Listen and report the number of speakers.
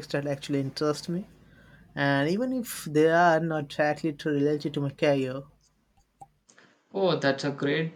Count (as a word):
two